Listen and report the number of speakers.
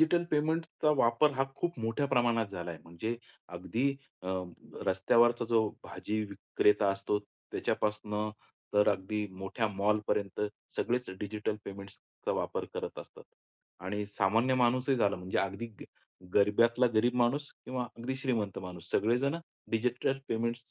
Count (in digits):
1